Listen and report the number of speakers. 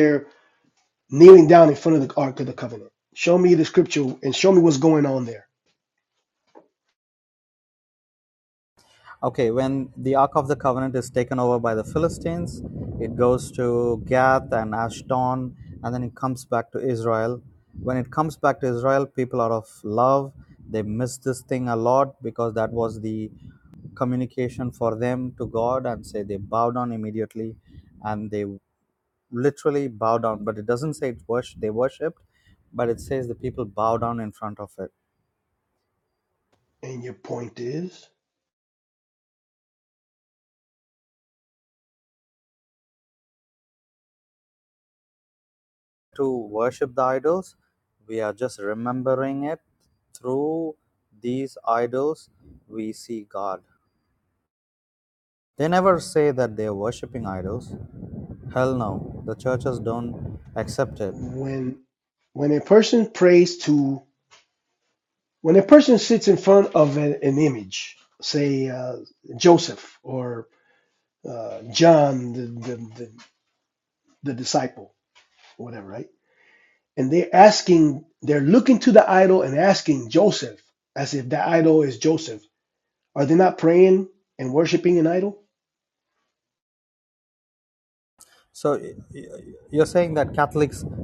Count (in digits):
2